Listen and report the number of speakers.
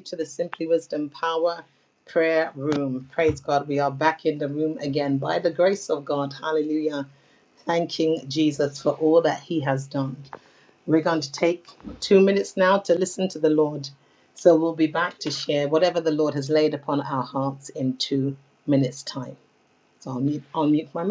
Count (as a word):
one